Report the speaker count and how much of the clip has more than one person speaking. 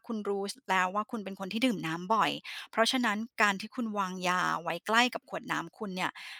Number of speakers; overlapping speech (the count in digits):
1, no overlap